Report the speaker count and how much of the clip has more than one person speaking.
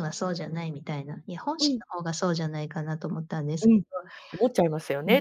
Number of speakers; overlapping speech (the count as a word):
two, about 8%